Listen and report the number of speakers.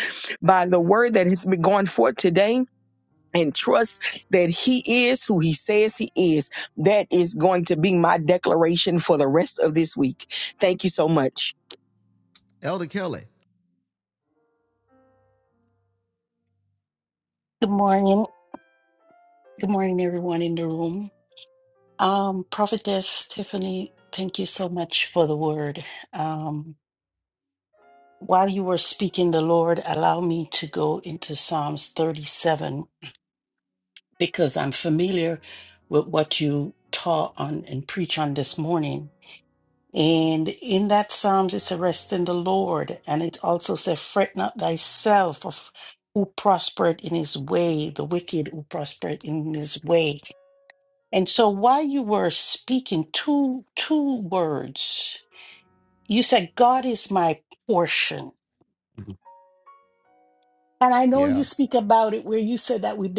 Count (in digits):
3